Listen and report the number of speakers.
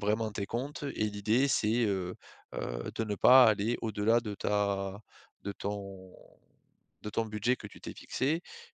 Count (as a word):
one